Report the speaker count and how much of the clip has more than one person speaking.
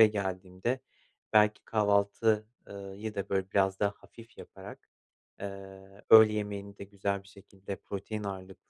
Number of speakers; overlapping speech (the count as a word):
one, no overlap